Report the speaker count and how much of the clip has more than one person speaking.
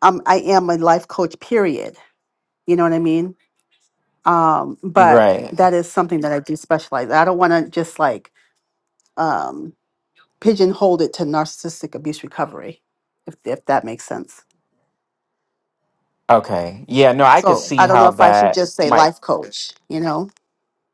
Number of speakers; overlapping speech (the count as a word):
two, about 11%